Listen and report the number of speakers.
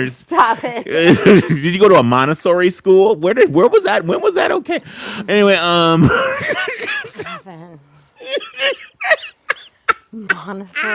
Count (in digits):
2